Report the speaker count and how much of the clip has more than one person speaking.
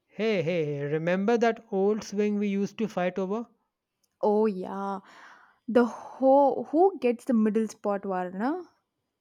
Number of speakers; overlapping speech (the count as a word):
two, no overlap